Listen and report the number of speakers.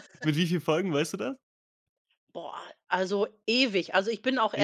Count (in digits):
2